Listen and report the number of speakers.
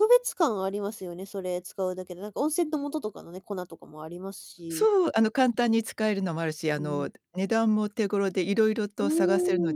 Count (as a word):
two